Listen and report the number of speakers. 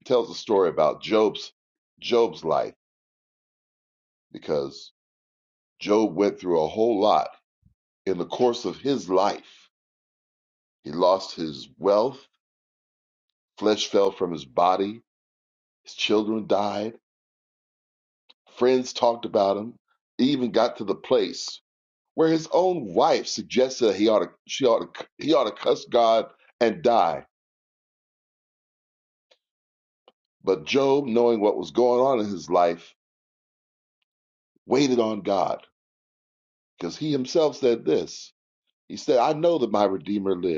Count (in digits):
1